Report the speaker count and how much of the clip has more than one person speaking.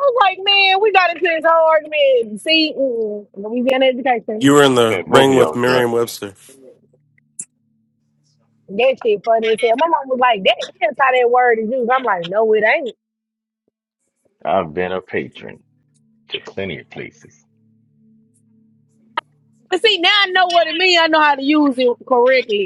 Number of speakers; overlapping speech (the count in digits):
3, about 6%